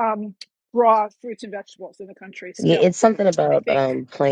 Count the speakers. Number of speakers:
2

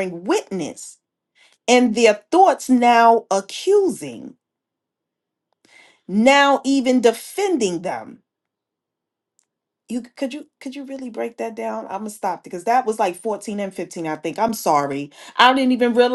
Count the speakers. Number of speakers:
1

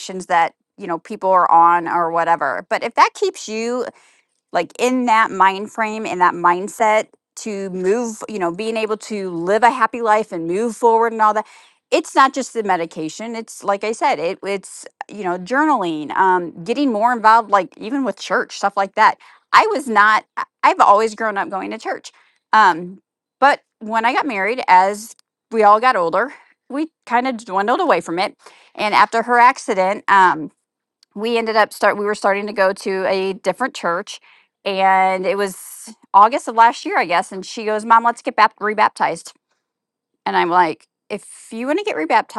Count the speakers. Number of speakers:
1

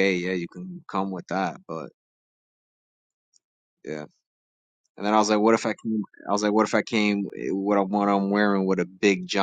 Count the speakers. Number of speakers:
1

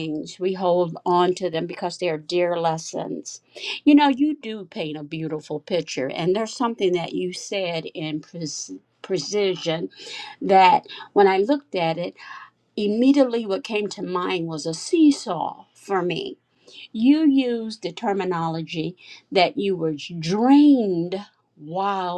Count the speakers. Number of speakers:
1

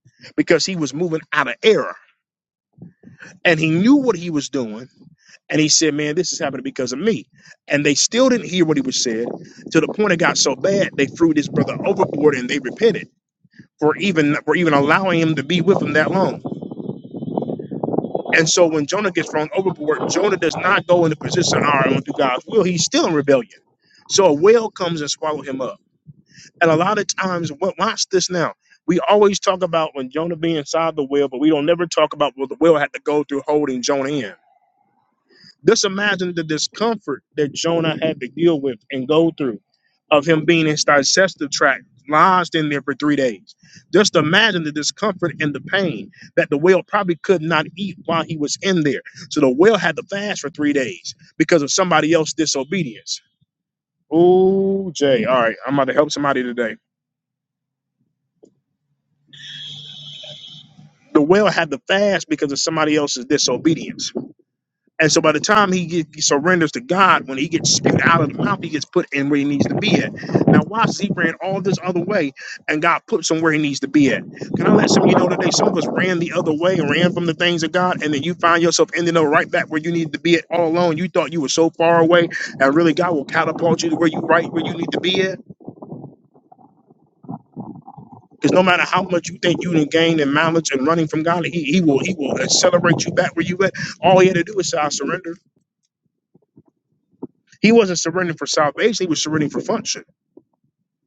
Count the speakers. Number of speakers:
1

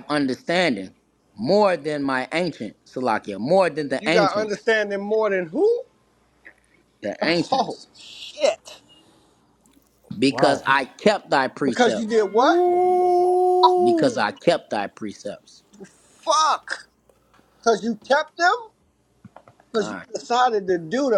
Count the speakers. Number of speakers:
3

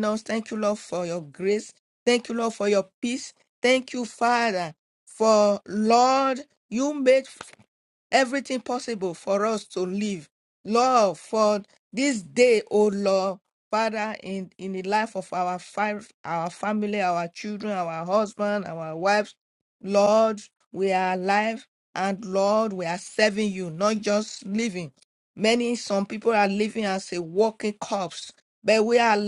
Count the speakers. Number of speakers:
1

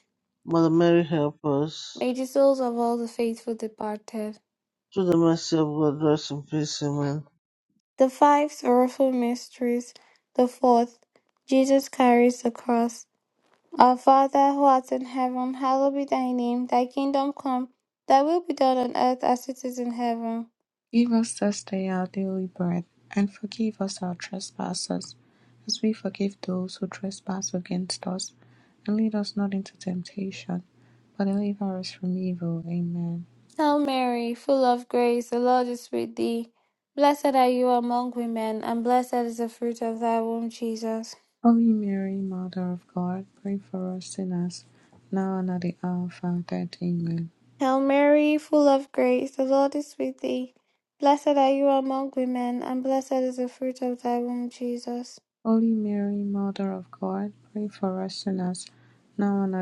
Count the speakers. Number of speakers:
3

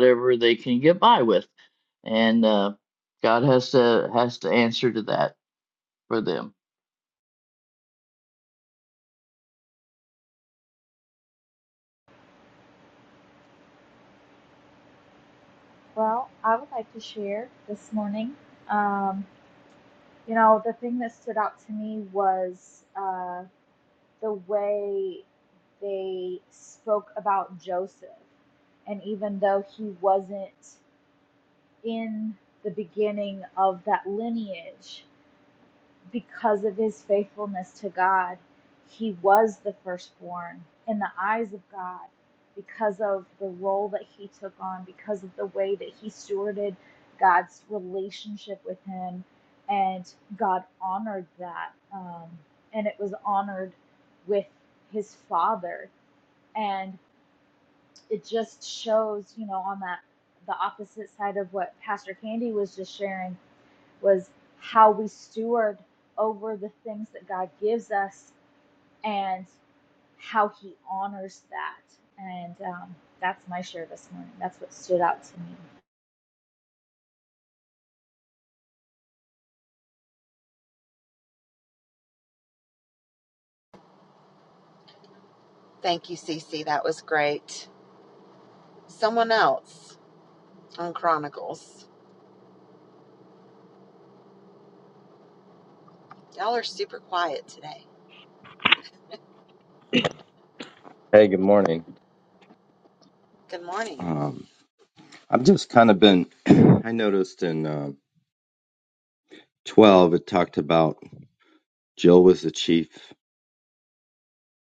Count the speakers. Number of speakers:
4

